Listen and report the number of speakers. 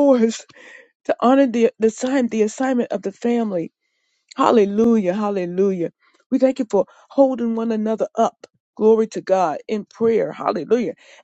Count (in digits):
1